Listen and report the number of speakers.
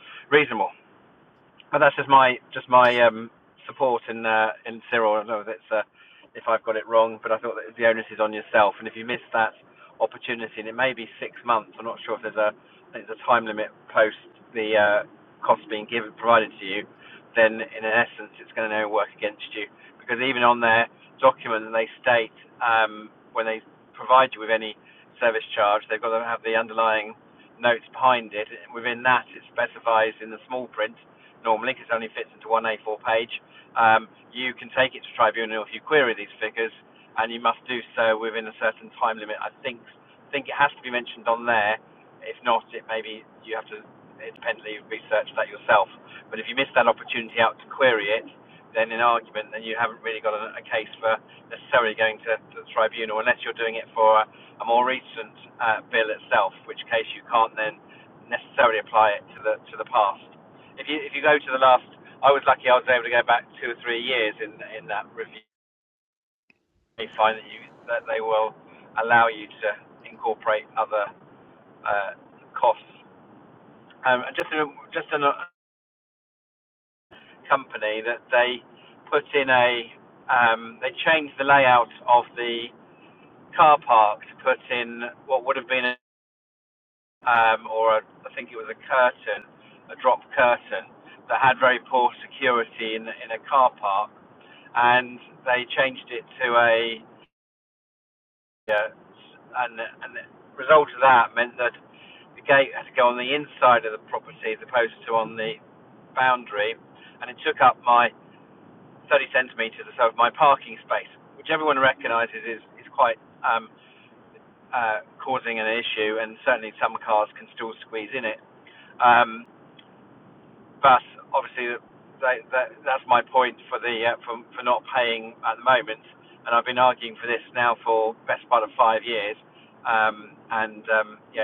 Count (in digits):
1